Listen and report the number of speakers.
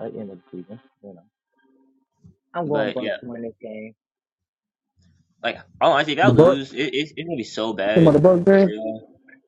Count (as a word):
three